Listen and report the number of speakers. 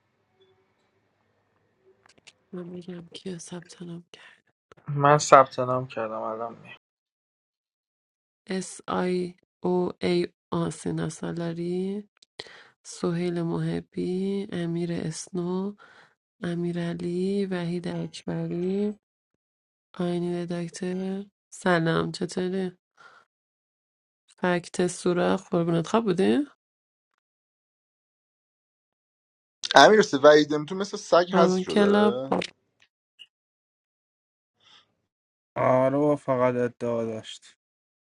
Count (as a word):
four